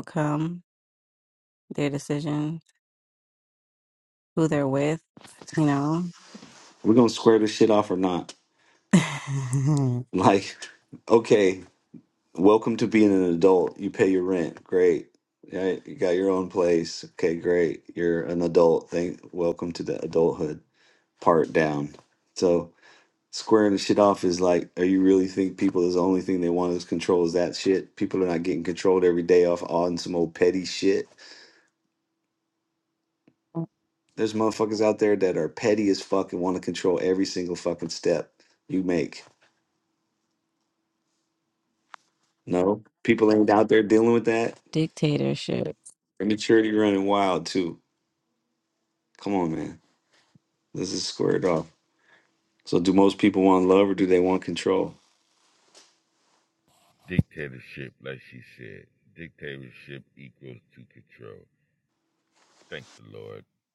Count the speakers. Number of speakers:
three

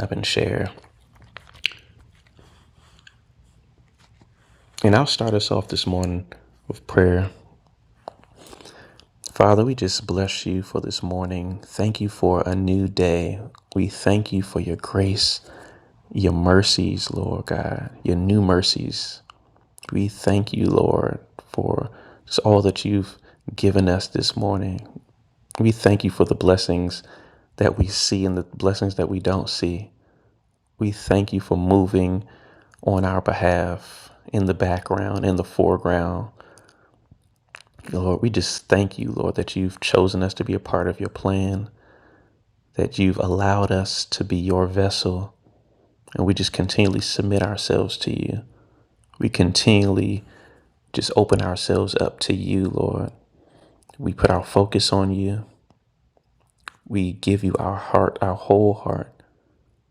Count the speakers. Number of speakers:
one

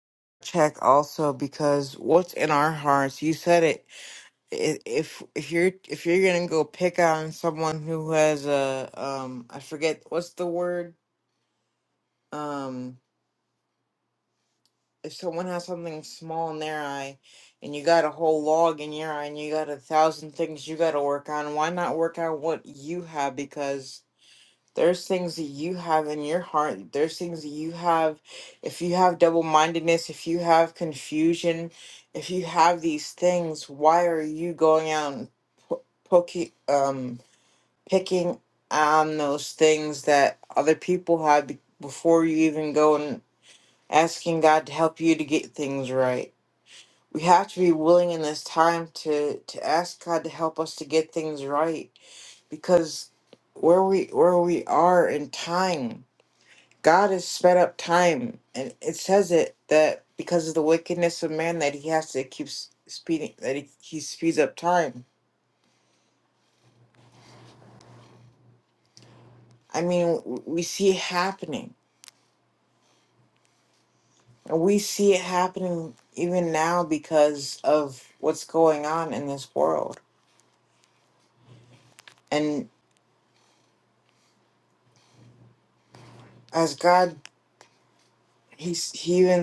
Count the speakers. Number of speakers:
one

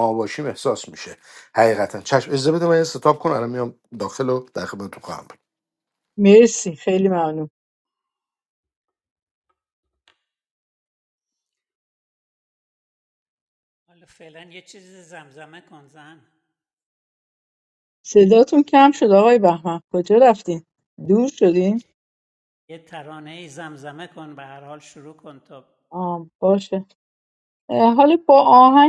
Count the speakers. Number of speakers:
three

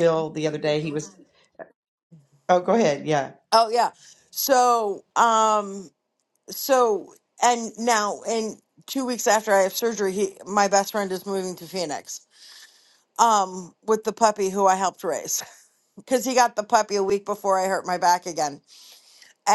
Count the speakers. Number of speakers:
two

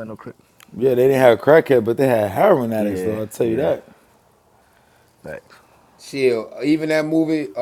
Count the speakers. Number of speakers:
three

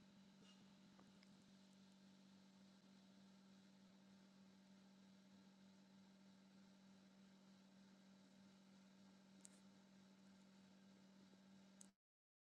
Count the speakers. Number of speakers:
zero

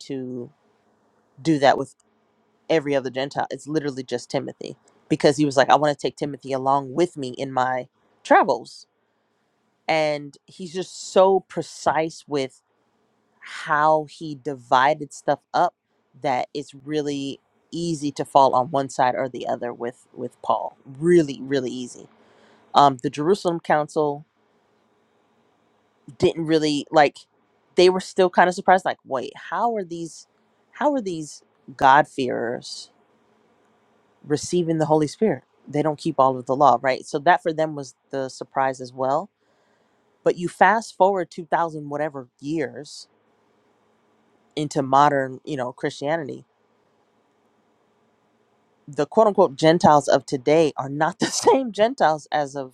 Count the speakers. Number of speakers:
one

